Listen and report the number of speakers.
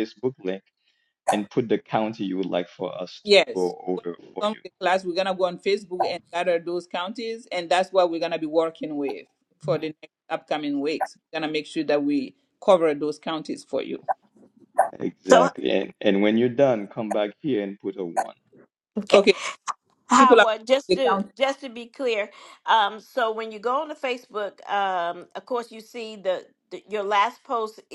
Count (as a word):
three